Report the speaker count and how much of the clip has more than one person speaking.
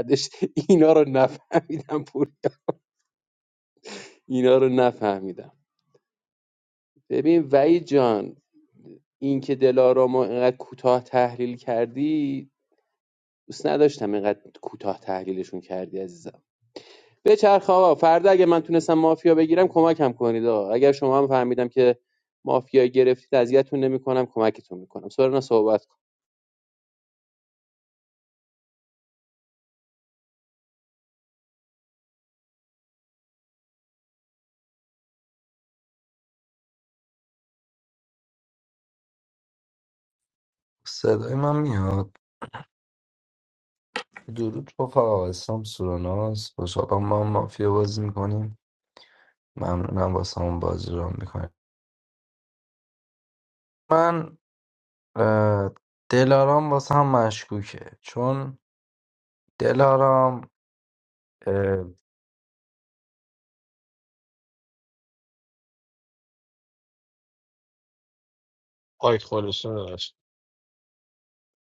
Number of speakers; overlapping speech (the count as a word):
three, no overlap